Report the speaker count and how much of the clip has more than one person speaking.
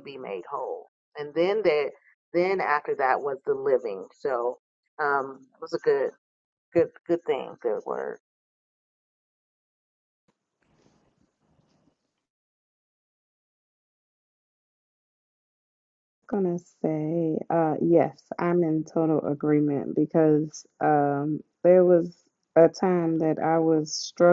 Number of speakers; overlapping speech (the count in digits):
2, no overlap